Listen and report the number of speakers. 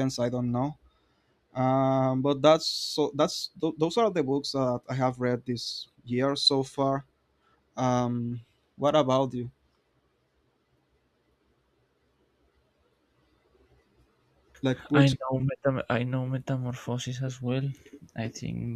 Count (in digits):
2